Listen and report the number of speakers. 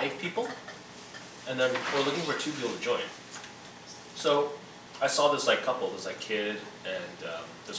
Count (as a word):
one